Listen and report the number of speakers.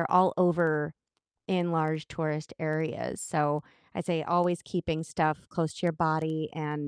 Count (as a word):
one